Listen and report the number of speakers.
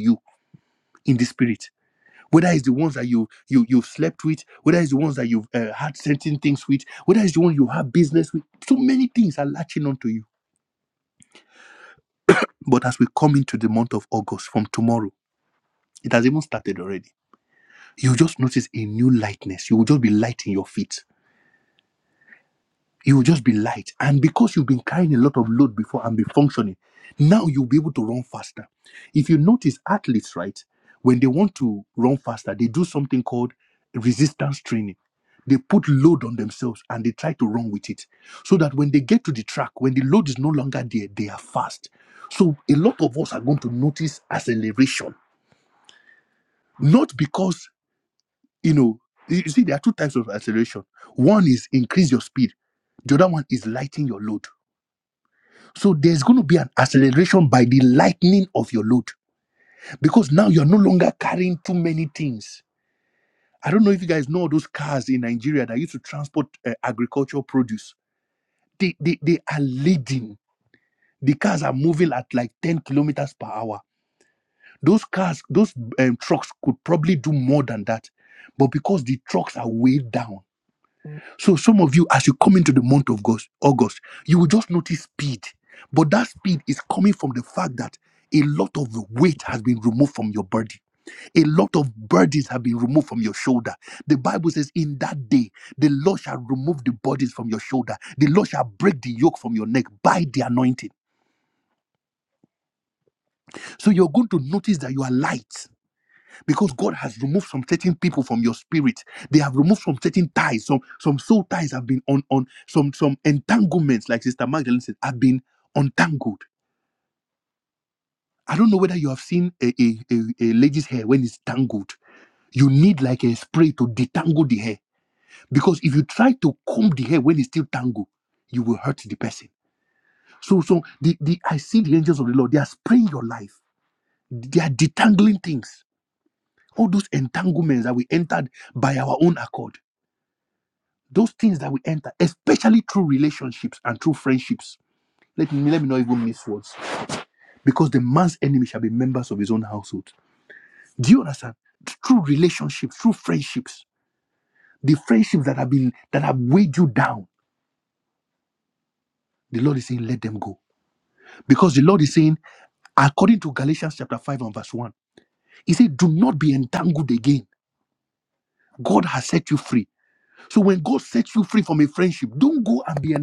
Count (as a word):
one